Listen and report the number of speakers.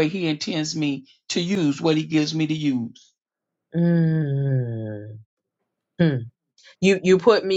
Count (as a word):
two